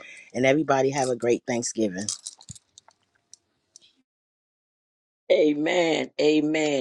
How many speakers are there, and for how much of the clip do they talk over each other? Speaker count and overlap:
two, no overlap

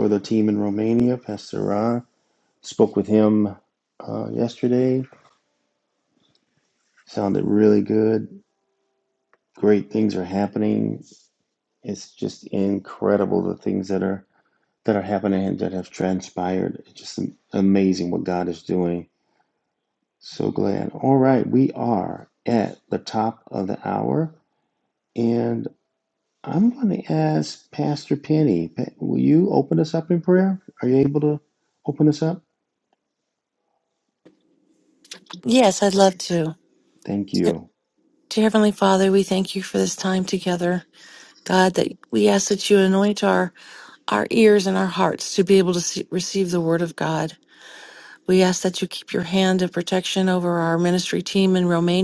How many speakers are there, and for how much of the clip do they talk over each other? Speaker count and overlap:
two, no overlap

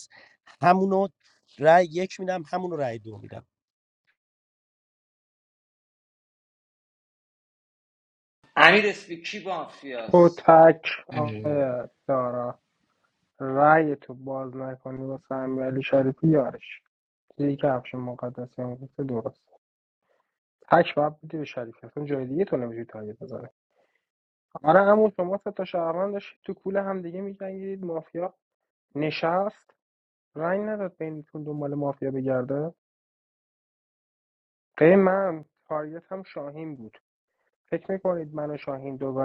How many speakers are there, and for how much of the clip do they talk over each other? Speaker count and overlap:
three, about 1%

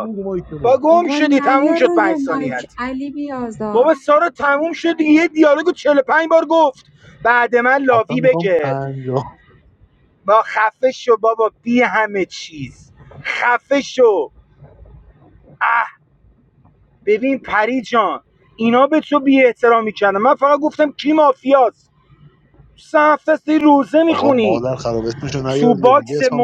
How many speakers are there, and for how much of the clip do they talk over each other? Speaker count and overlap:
three, about 18%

